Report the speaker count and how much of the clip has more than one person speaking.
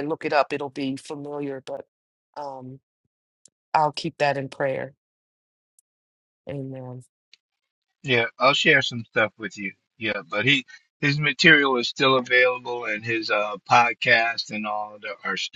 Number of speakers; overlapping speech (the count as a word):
two, no overlap